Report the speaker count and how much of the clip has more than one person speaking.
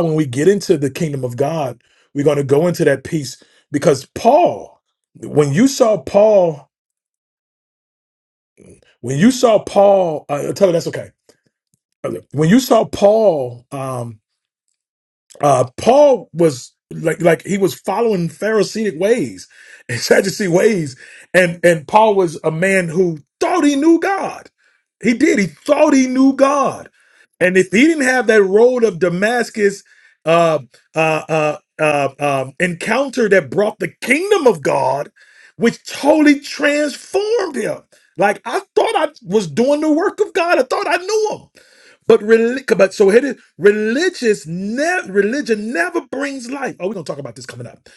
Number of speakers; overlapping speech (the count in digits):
1, no overlap